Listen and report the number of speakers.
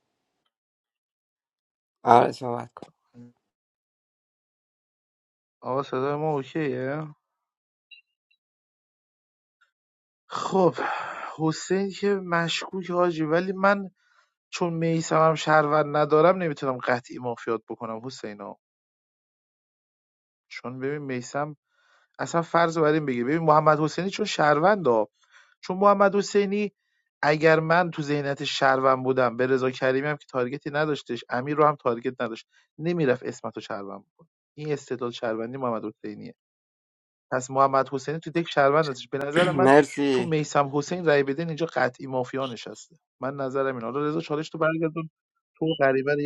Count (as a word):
two